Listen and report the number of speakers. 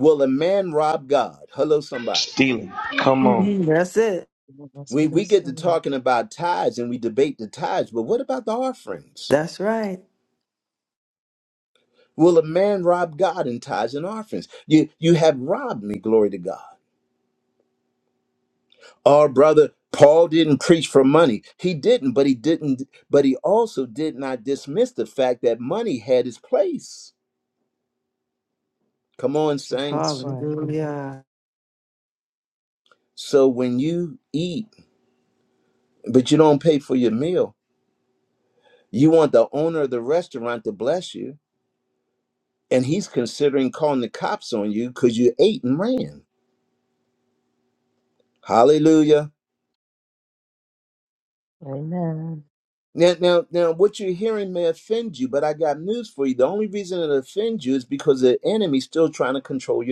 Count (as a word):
four